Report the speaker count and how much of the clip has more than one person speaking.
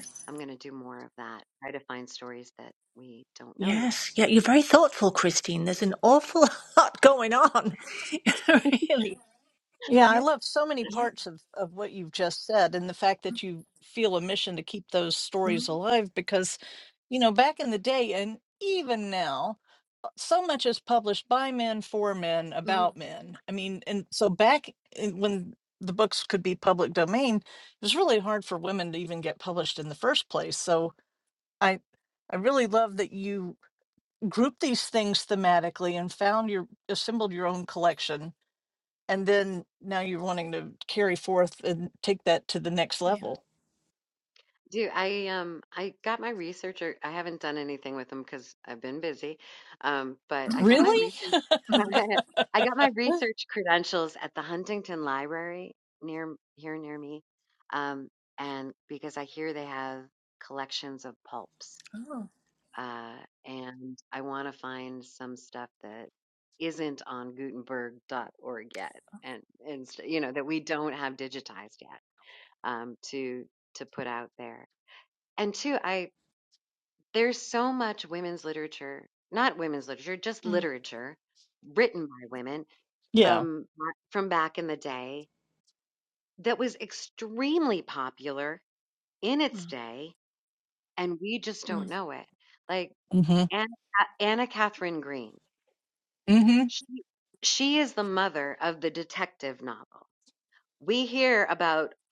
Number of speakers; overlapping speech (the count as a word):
three, about 2%